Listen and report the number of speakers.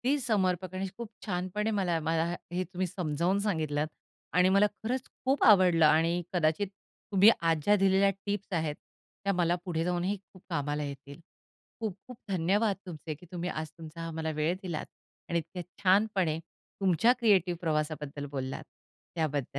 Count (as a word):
one